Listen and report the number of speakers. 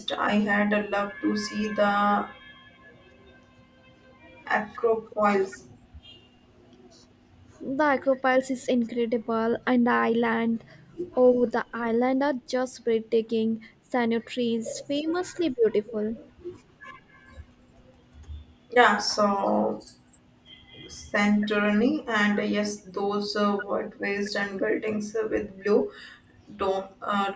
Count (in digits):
2